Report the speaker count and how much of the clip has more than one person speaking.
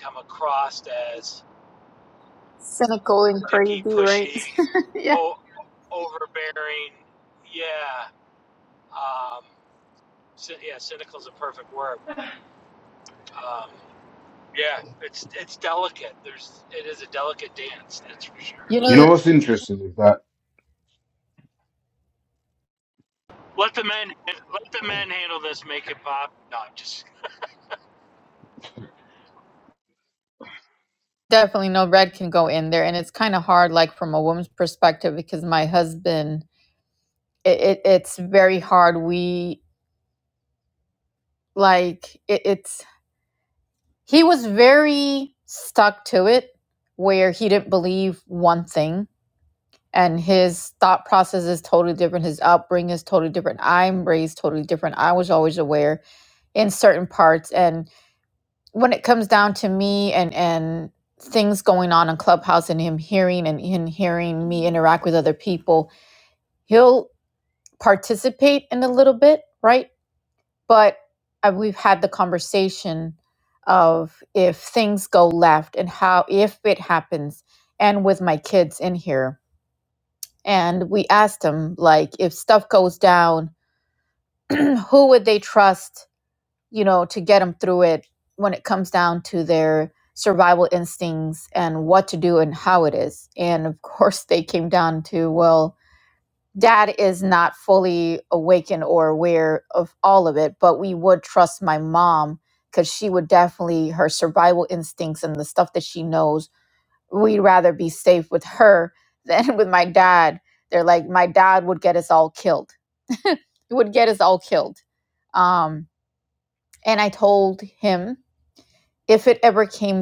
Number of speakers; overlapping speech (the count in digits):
3, about 1%